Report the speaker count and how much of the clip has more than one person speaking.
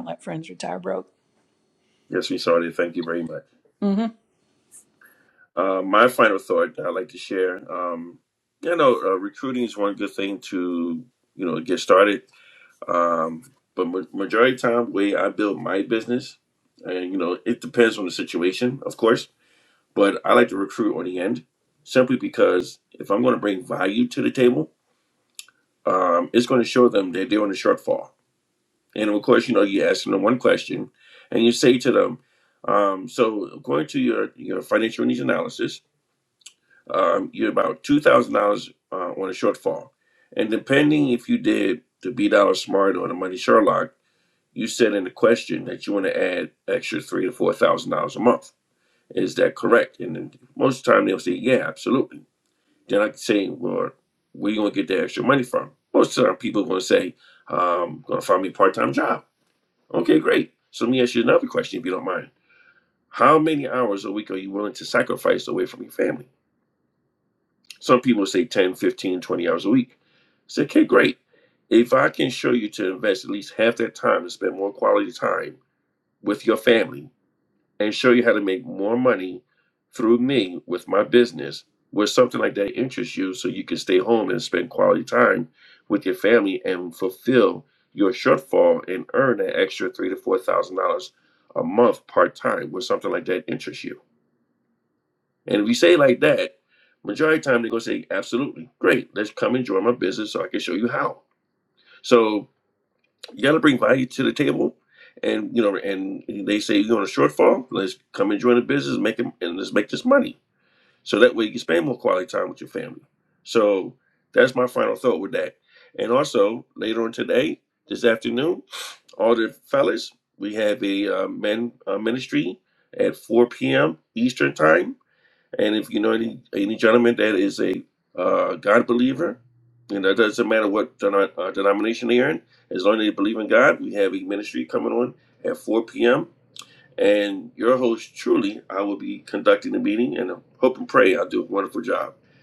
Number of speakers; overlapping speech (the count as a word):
two, no overlap